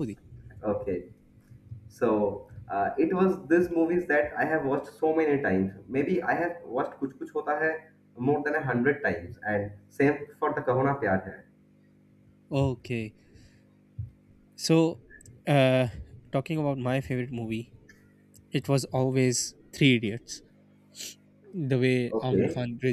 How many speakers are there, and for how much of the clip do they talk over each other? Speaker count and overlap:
2, about 2%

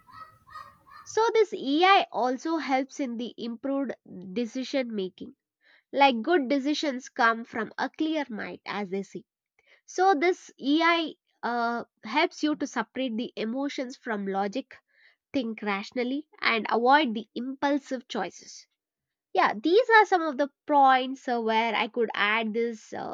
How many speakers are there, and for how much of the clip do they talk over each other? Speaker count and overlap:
1, no overlap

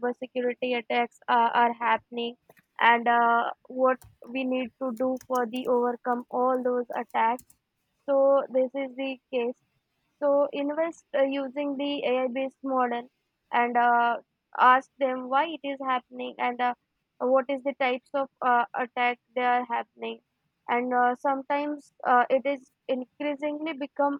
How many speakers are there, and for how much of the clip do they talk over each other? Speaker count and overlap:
1, no overlap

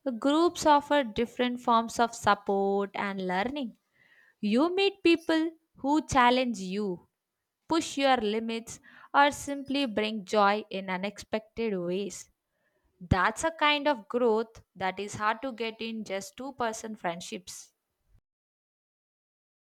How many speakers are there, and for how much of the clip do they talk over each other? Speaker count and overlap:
1, no overlap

